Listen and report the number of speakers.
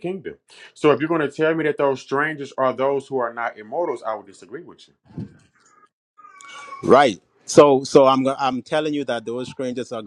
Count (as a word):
two